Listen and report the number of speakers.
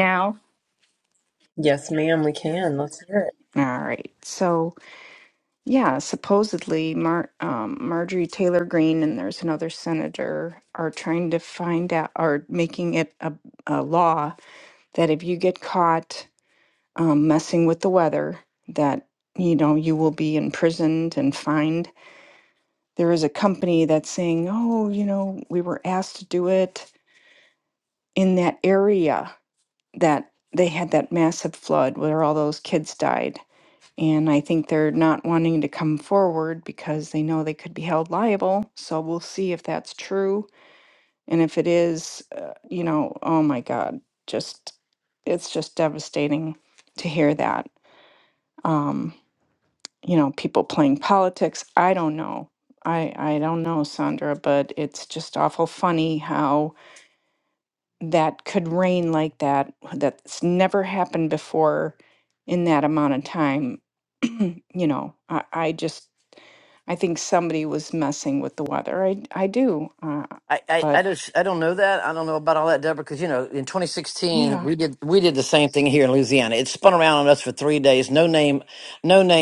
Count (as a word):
three